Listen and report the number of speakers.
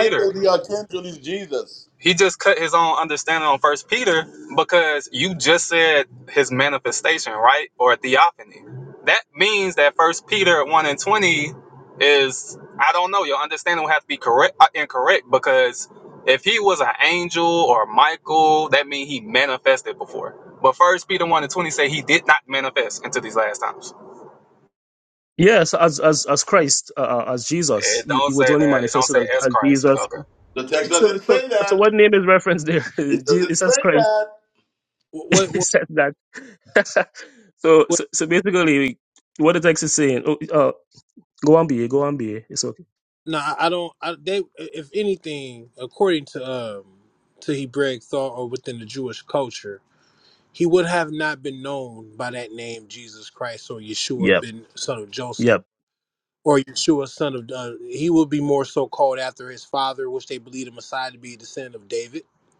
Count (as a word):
four